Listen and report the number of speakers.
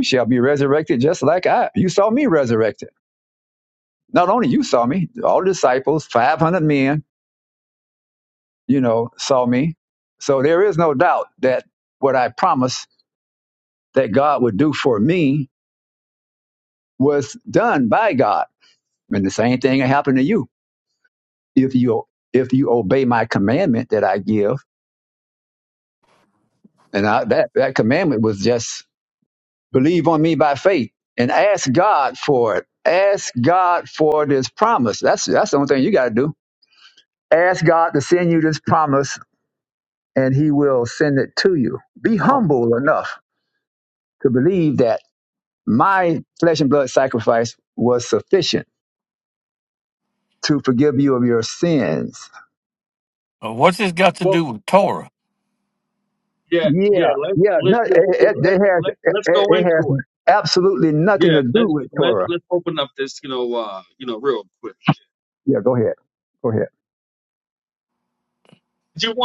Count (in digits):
3